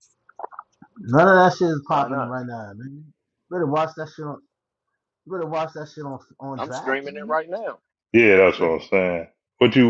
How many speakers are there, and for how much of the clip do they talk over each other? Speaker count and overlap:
3, about 13%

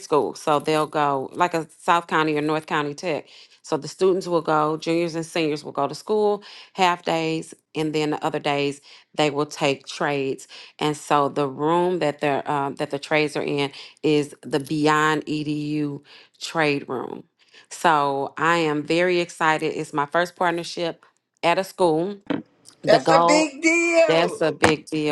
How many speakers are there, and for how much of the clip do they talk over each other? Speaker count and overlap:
2, about 4%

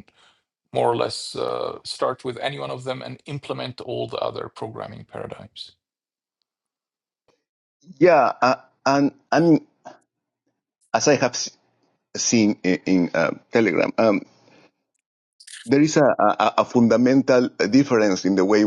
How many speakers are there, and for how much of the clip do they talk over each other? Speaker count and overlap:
2, no overlap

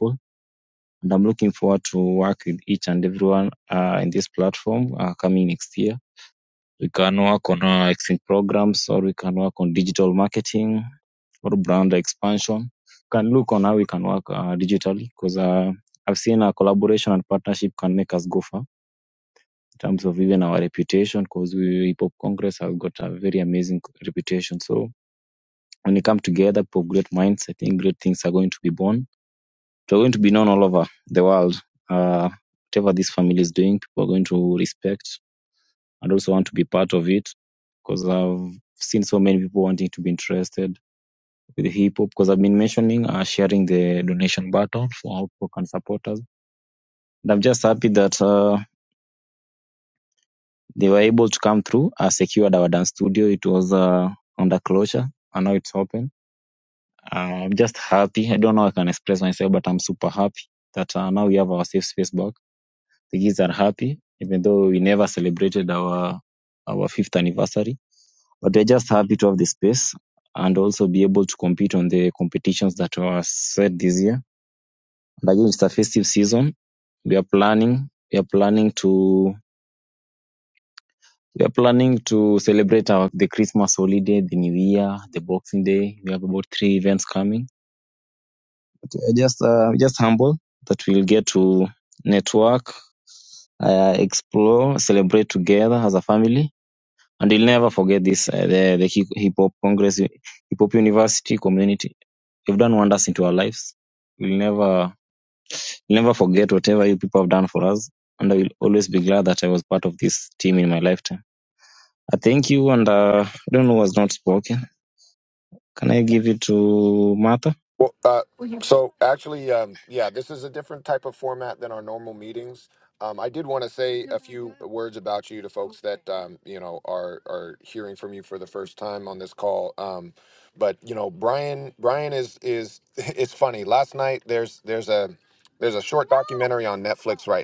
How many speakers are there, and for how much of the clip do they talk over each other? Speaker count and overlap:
2, no overlap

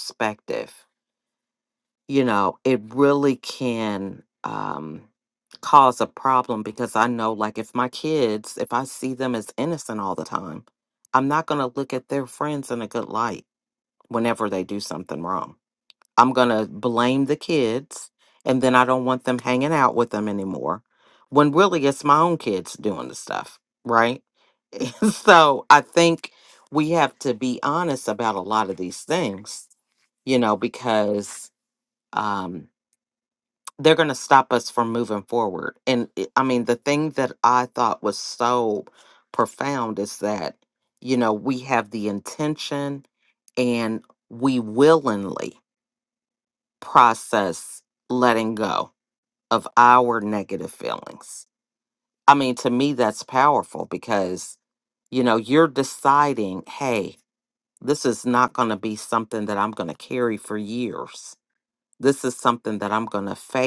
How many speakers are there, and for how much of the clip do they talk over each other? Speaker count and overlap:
1, no overlap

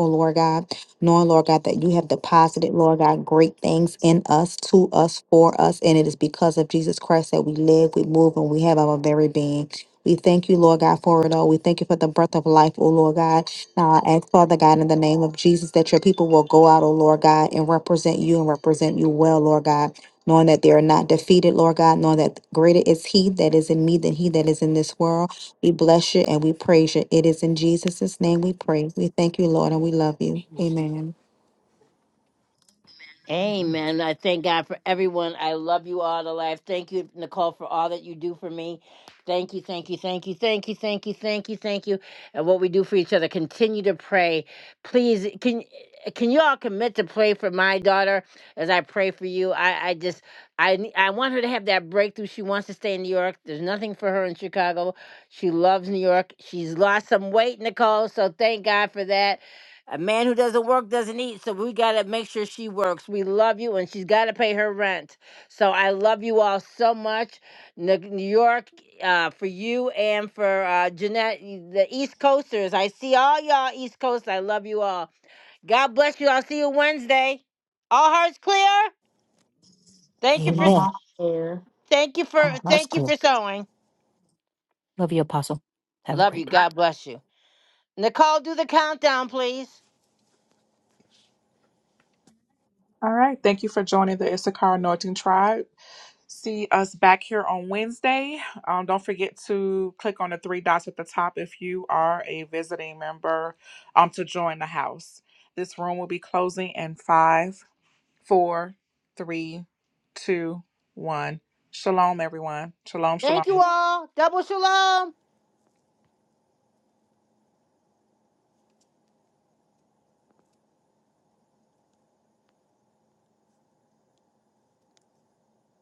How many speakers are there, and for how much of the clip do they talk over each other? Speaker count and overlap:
4, about 2%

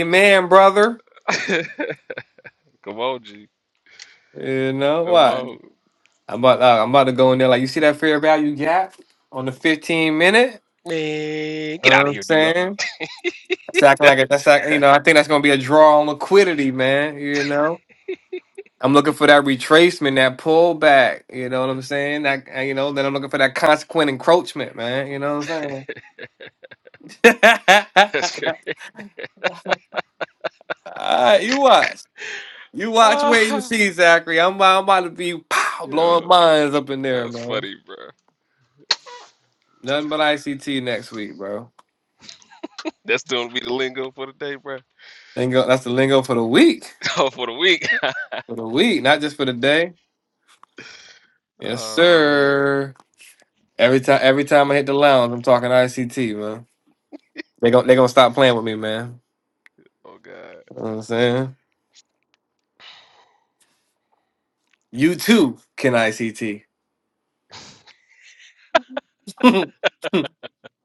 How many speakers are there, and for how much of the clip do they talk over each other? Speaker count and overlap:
2, about 6%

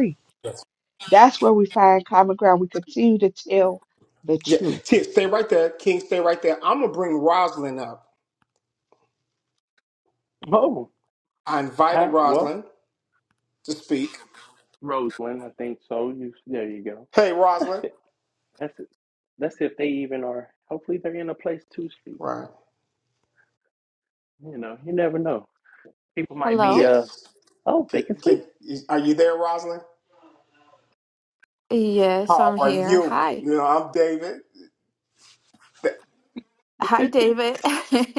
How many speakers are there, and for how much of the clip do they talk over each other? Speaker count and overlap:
4, about 9%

